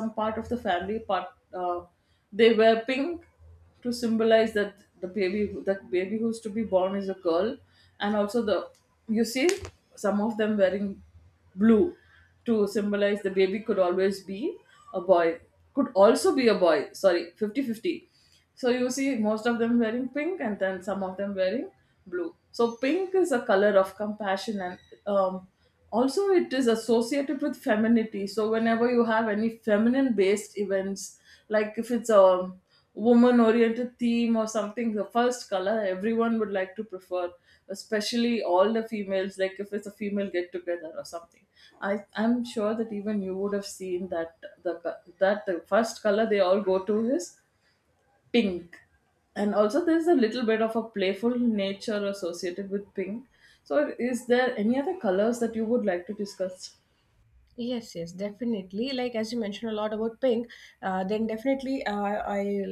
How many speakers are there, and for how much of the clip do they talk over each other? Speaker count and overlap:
2, no overlap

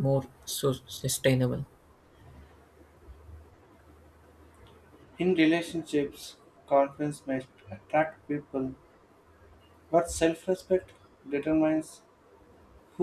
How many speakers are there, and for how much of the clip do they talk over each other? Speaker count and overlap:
2, no overlap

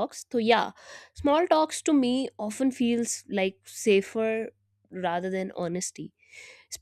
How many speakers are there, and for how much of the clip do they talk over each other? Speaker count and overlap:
1, no overlap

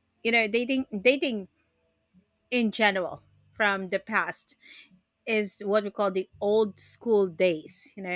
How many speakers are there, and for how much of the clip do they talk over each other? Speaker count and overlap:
1, no overlap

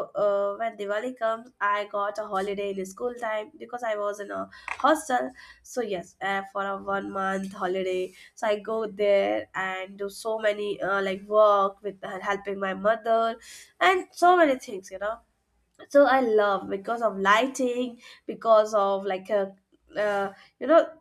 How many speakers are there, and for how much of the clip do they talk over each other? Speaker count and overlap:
1, no overlap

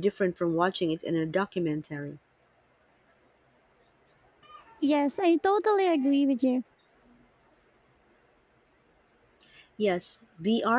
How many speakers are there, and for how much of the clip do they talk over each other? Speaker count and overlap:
2, no overlap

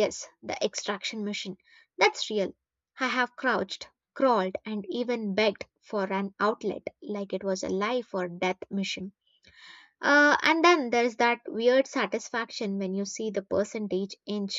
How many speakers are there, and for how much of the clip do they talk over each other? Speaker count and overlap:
1, no overlap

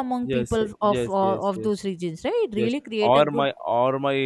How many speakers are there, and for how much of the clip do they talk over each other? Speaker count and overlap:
2, about 55%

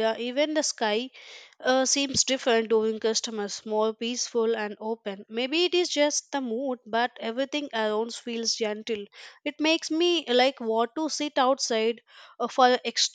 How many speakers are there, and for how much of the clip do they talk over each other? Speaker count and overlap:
1, no overlap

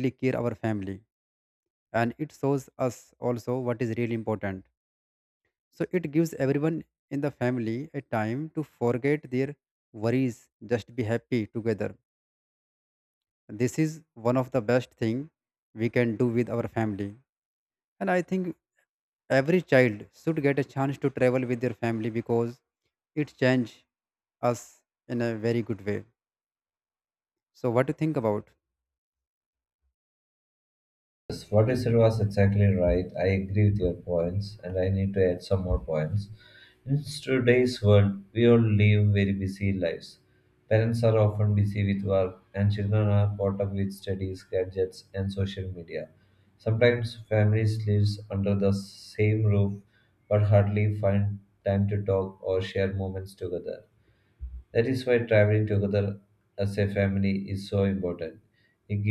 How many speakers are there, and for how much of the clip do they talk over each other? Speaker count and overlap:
2, no overlap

